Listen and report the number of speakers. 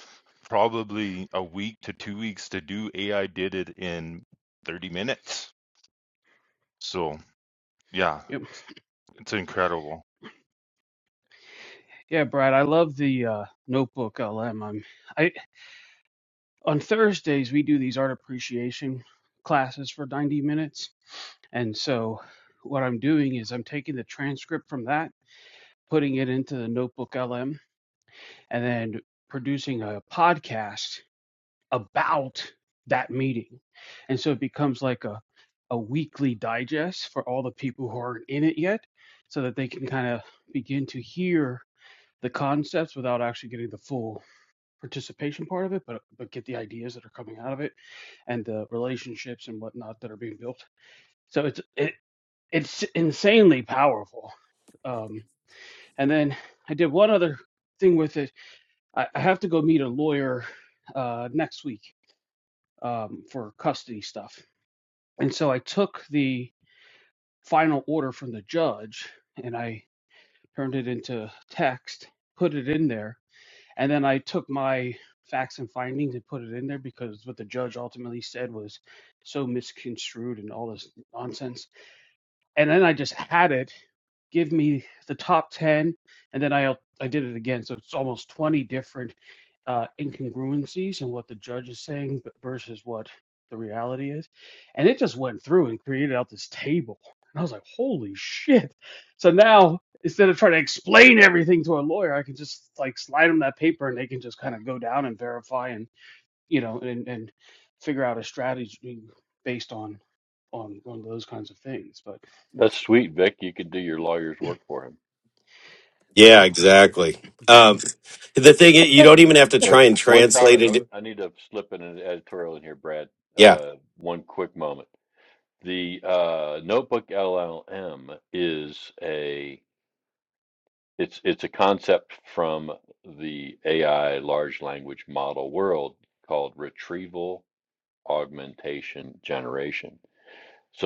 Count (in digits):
4